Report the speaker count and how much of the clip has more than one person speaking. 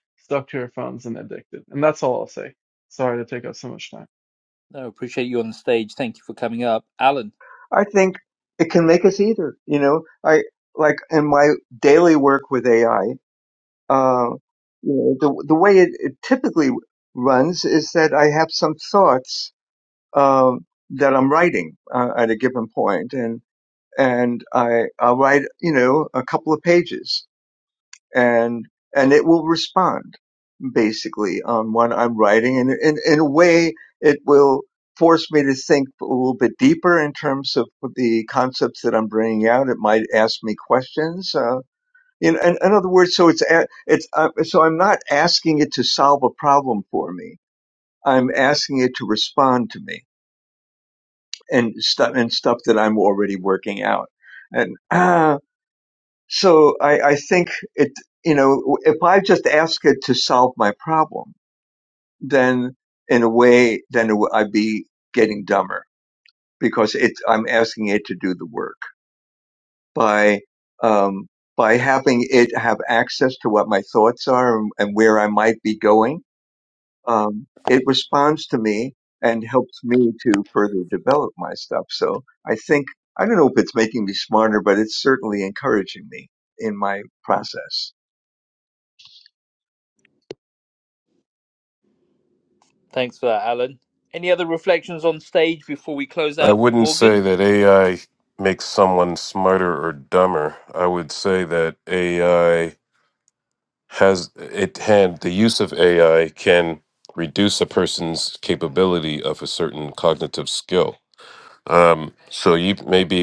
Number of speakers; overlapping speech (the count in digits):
4, about 1%